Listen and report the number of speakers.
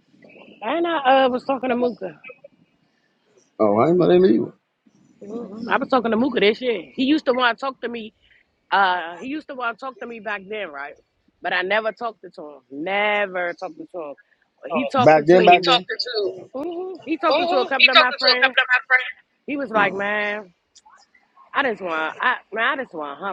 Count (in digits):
2